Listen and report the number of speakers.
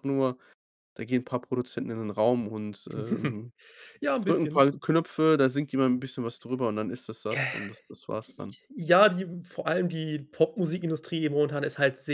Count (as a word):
two